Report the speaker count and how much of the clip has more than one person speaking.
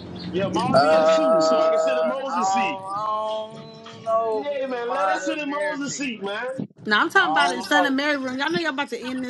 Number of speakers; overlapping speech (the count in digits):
3, about 52%